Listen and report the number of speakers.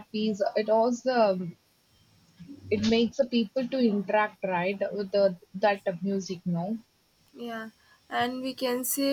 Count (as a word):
two